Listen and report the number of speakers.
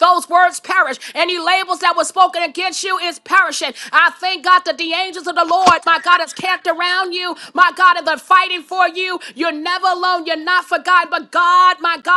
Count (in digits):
1